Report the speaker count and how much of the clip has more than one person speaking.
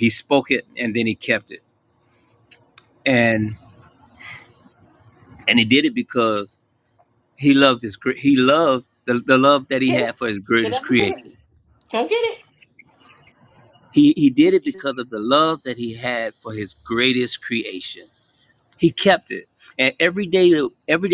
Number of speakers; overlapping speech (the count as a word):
two, about 5%